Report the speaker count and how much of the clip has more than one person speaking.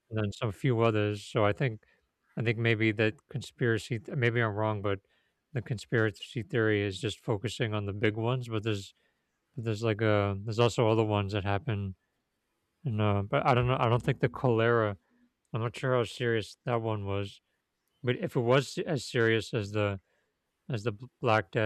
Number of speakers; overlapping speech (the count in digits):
1, no overlap